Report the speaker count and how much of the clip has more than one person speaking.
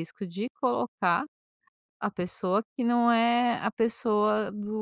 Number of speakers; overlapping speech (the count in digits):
1, no overlap